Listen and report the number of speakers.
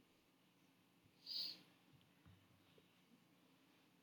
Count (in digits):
0